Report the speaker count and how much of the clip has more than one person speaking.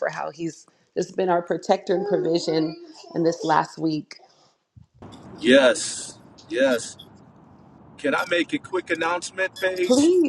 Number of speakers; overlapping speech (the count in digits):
2, about 3%